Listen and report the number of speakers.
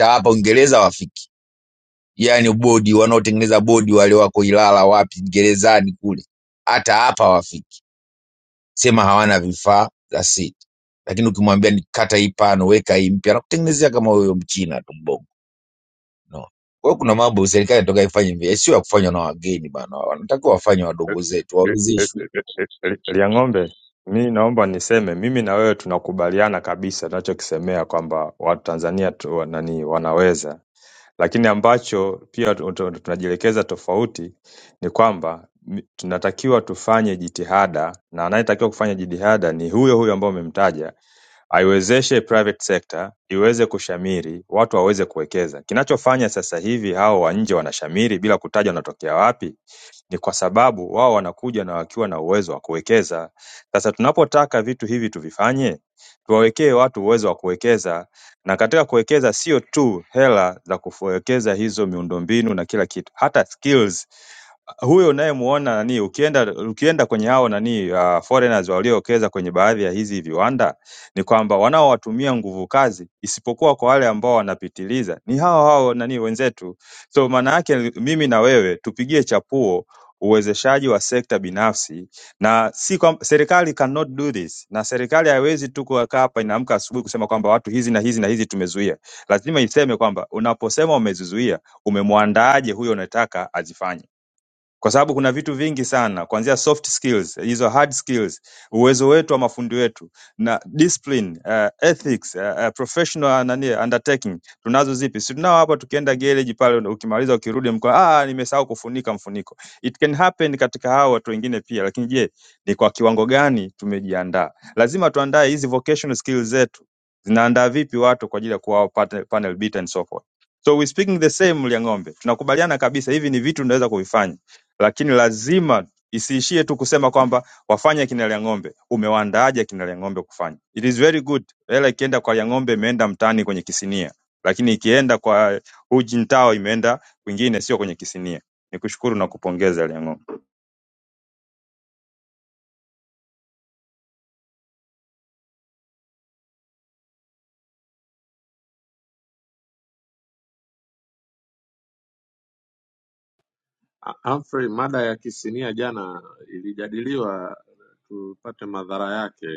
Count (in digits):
3